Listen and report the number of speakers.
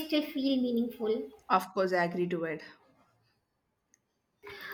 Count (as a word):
two